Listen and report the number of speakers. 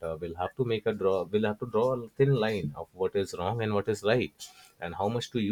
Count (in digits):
1